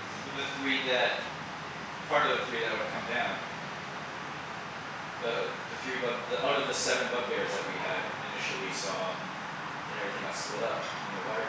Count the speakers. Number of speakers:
one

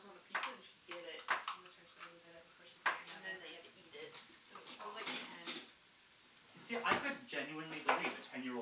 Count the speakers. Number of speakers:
three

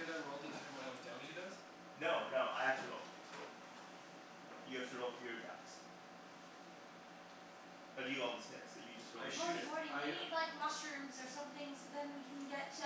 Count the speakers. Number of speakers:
three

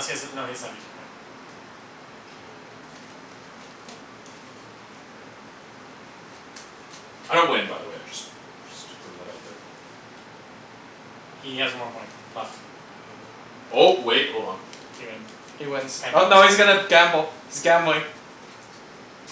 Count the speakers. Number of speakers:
three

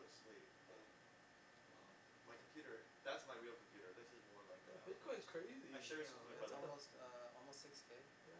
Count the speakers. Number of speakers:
three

